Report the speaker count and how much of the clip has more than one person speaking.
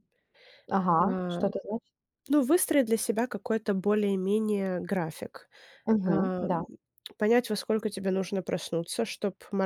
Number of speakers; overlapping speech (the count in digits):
2, about 11%